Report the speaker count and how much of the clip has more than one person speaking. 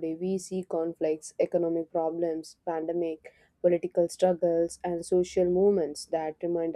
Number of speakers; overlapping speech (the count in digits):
1, no overlap